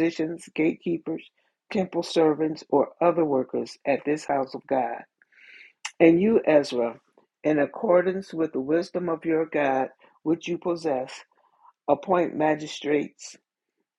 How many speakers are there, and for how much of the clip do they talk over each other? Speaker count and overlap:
one, no overlap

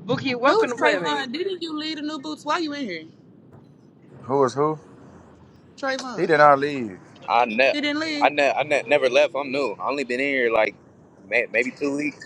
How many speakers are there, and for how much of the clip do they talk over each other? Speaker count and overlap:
four, about 9%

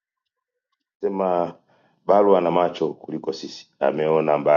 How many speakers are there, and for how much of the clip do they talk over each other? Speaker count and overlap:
one, no overlap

